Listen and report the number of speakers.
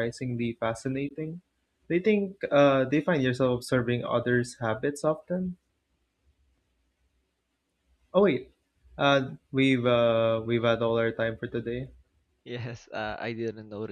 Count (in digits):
2